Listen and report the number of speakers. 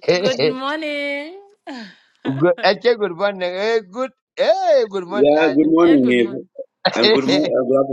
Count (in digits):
3